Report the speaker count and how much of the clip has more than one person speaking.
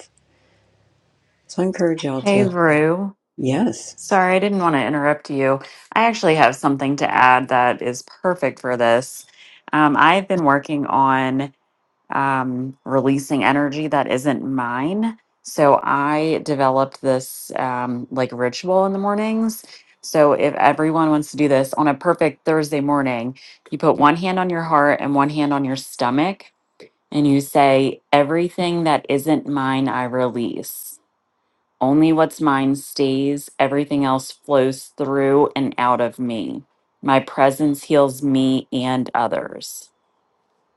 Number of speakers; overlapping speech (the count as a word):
two, about 1%